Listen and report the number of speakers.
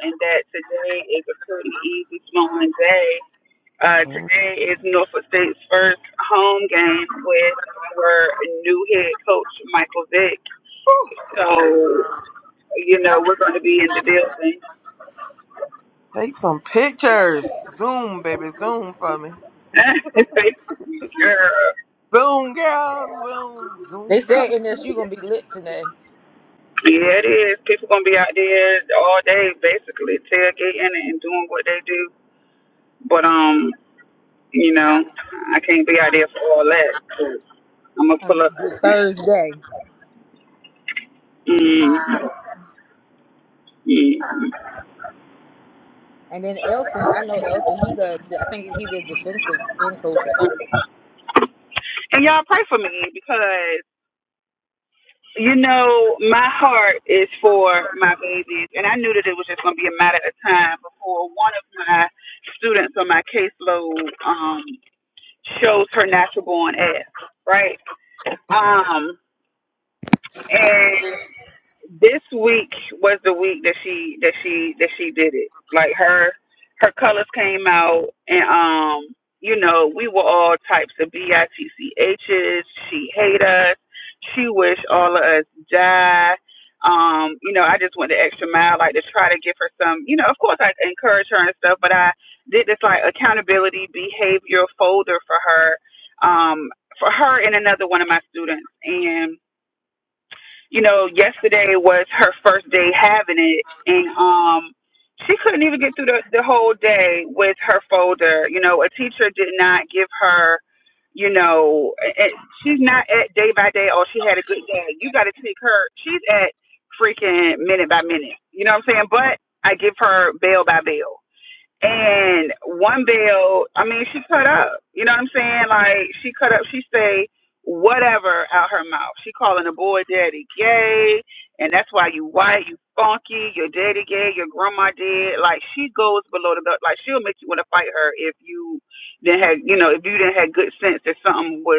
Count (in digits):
3